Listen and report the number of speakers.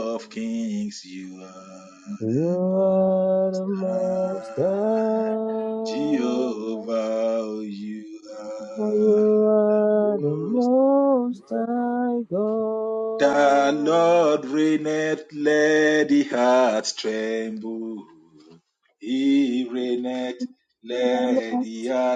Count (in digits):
2